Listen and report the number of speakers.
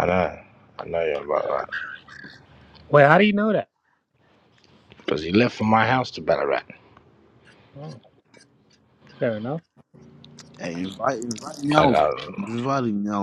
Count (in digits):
3